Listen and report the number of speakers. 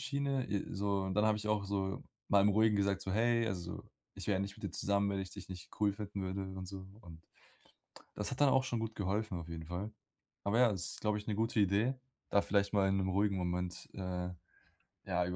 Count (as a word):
one